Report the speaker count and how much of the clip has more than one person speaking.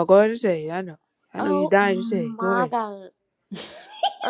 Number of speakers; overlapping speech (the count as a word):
two, about 30%